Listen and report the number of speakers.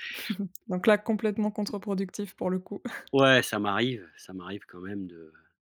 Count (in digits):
2